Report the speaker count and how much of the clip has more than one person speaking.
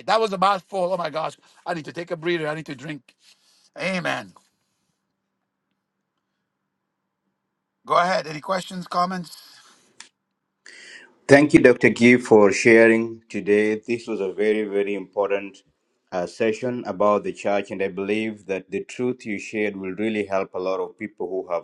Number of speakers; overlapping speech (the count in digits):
2, no overlap